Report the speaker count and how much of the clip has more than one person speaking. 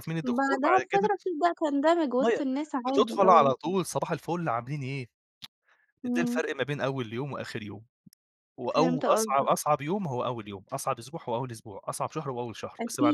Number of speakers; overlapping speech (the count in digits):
2, about 22%